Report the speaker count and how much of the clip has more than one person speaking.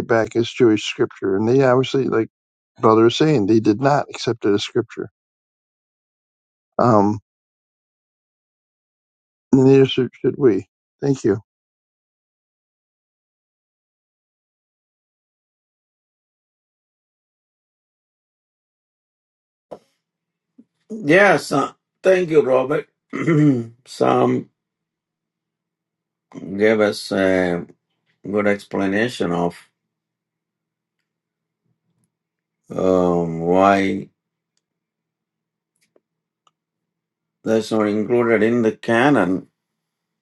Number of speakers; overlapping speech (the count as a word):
two, no overlap